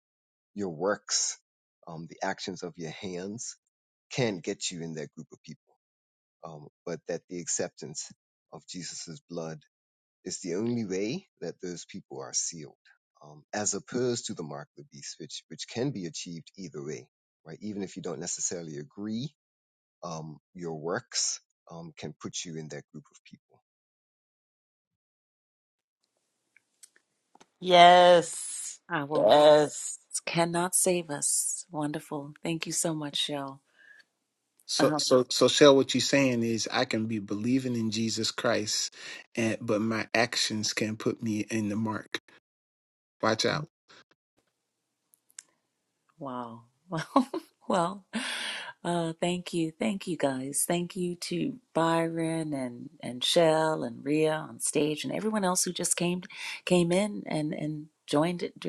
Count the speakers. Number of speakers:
4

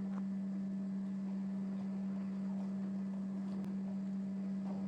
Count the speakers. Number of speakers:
0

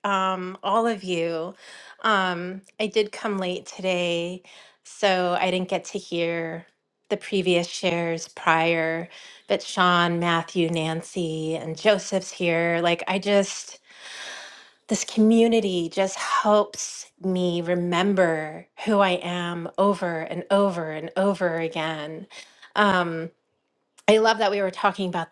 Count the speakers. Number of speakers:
1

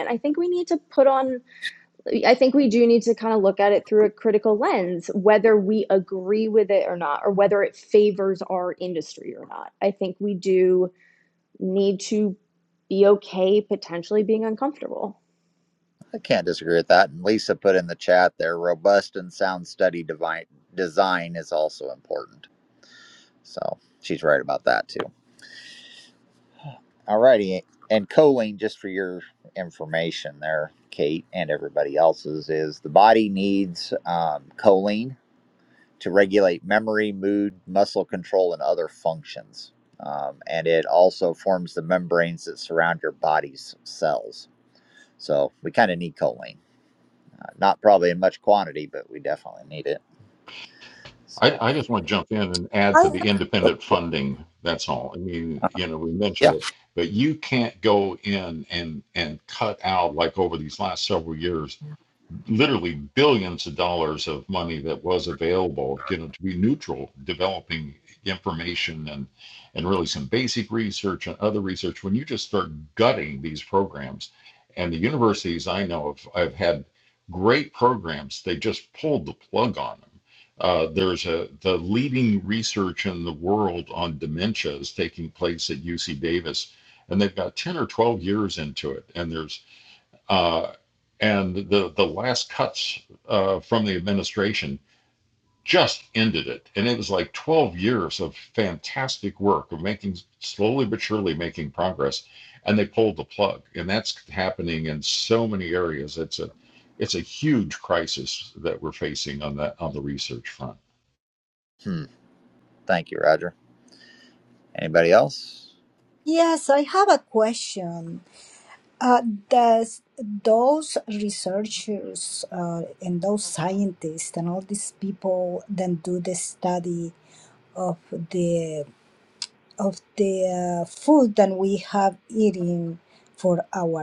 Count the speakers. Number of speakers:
4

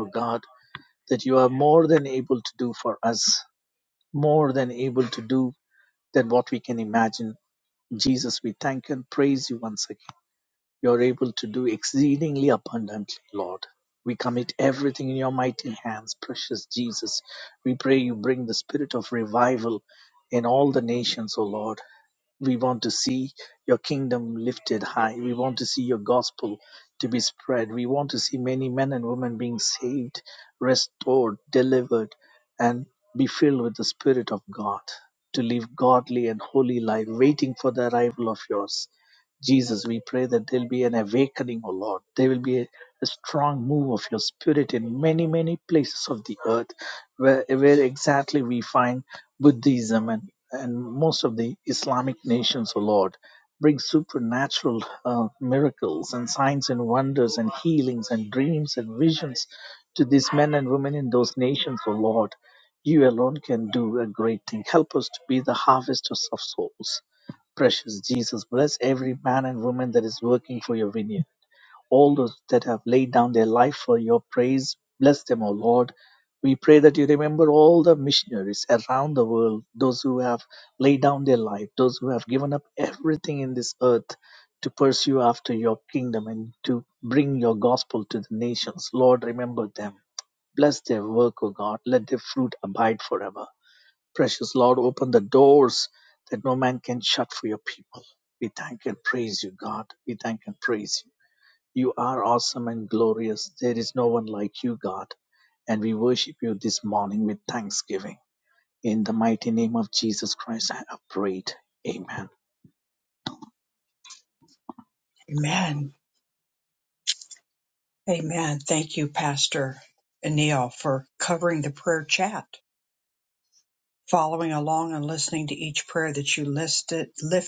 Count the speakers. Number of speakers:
2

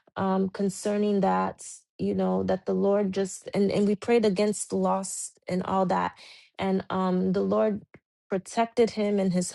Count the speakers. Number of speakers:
1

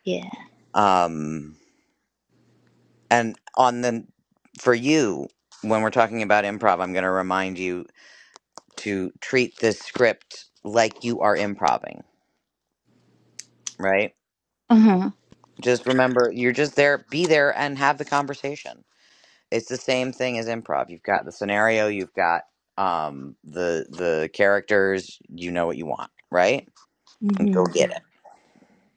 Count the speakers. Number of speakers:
2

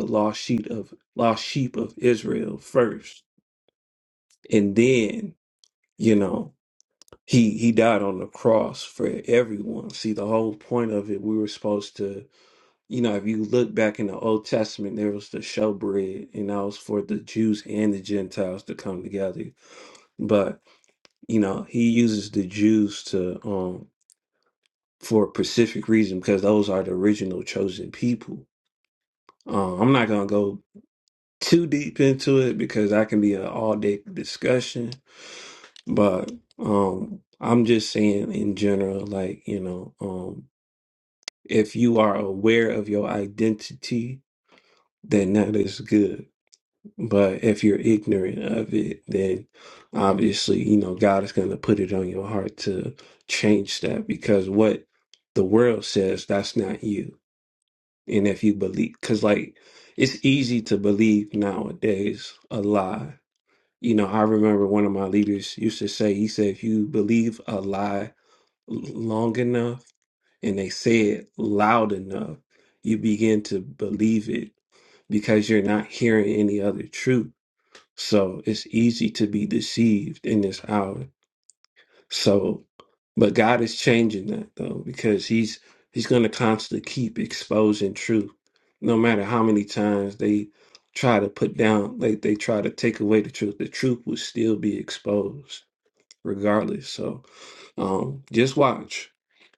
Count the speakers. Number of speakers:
1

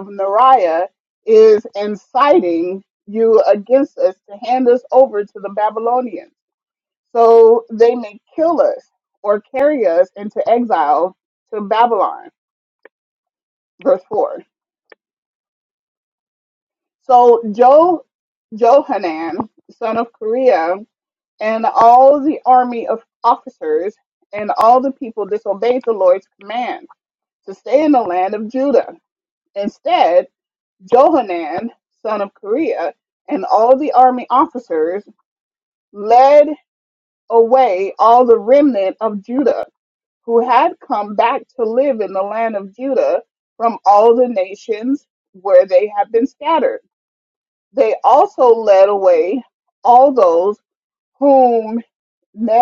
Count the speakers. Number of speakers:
1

